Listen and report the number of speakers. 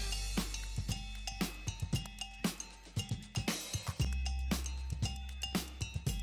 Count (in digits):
0